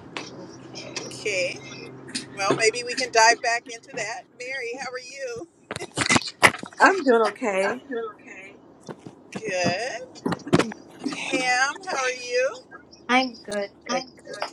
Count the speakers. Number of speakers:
three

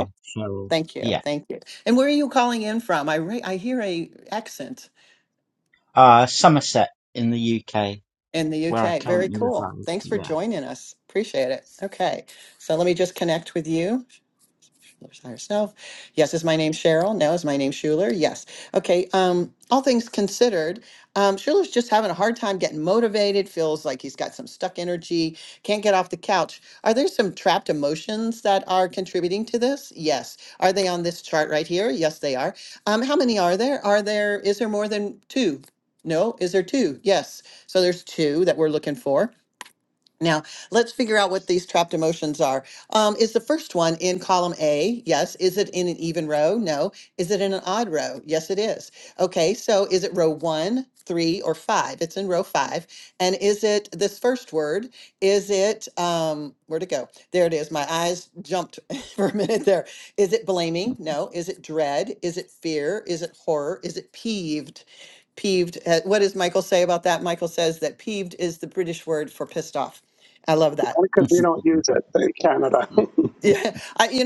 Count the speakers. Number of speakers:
three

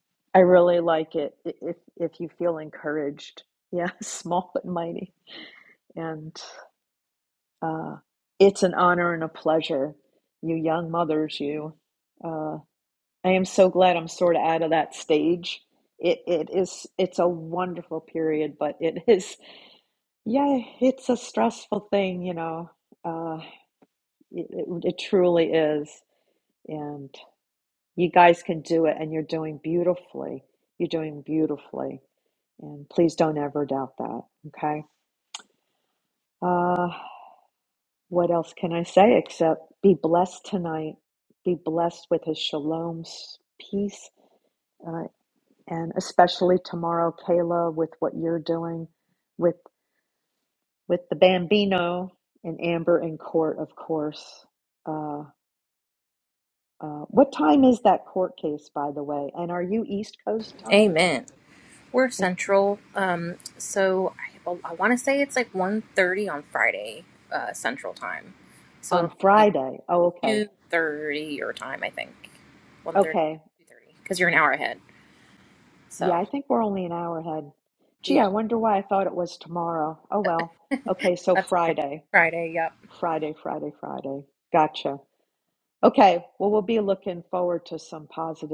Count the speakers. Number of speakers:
two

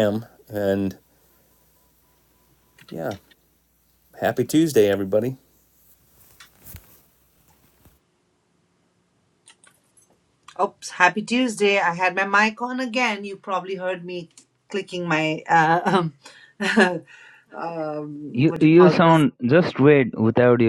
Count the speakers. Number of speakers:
three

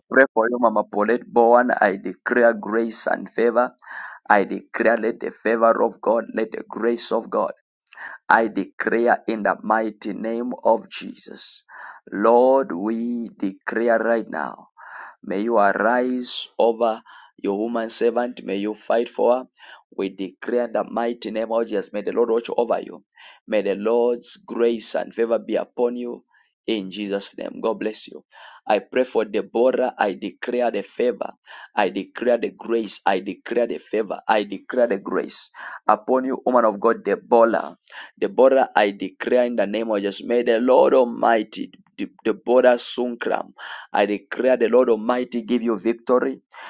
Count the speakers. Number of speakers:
one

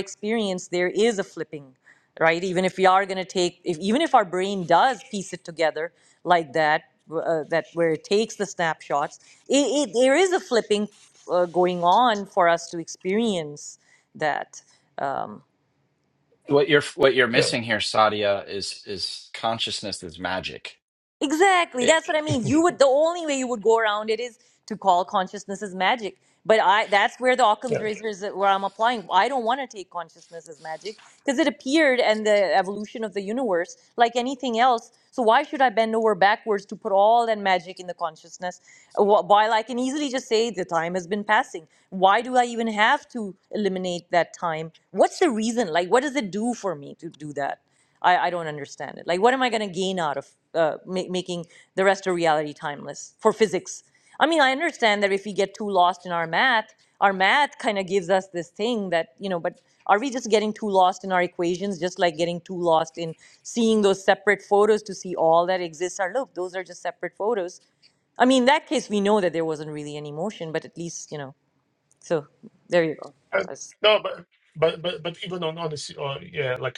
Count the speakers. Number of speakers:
three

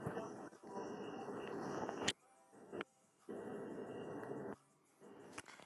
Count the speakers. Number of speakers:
zero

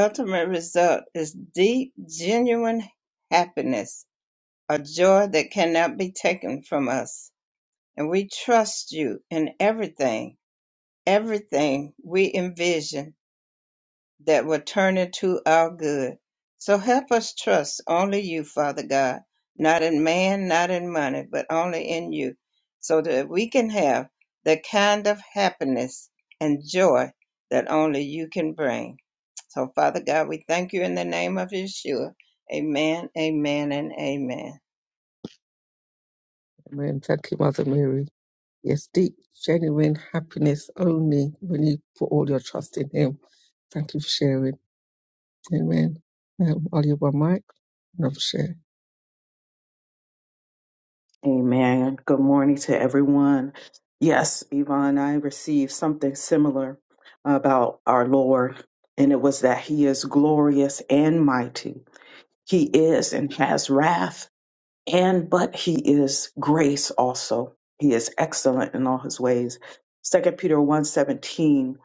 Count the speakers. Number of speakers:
three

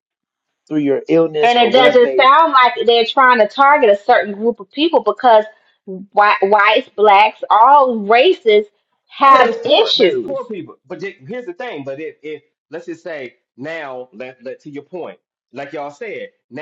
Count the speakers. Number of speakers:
three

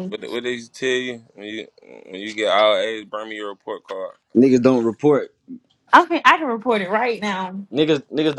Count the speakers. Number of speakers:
three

